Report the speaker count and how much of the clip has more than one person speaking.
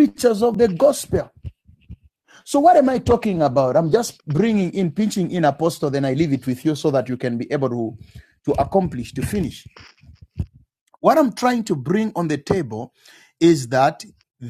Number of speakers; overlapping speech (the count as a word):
one, no overlap